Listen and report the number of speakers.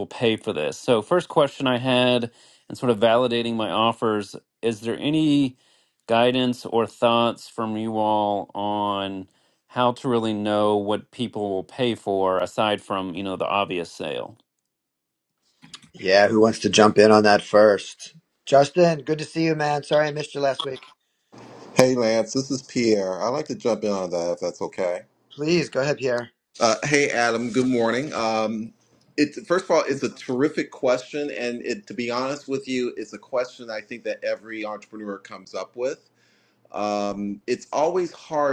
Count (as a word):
three